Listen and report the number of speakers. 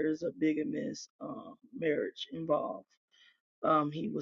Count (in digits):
1